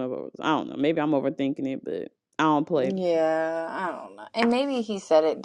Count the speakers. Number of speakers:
2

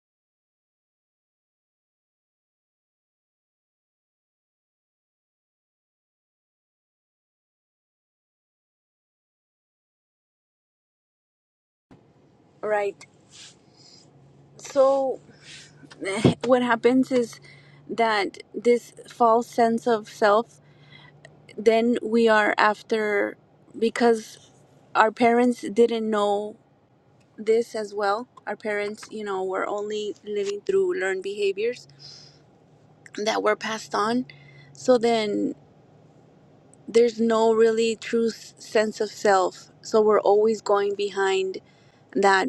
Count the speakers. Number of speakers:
1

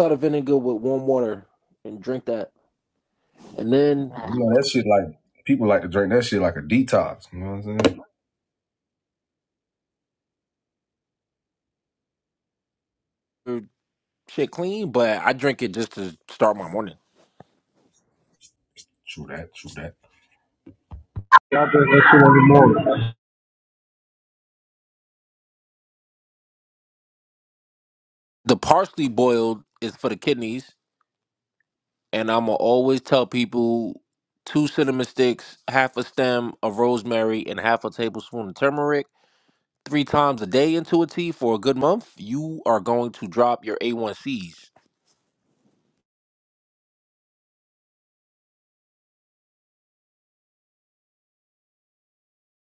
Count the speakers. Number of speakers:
3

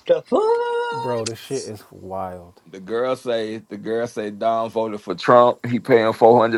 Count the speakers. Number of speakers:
3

